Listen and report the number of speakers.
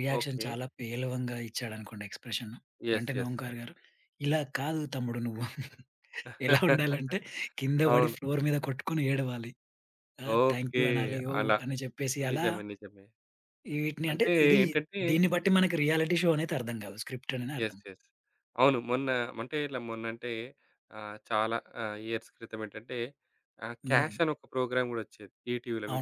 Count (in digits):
2